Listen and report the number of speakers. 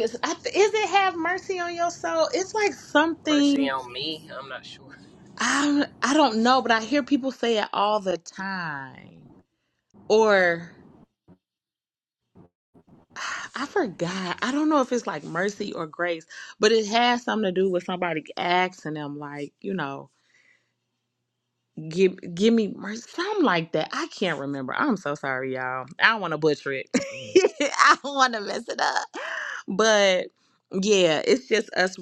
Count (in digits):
2